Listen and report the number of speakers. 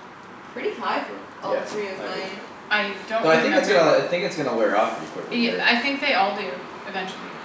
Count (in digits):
3